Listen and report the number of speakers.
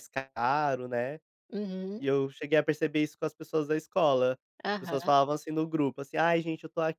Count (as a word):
two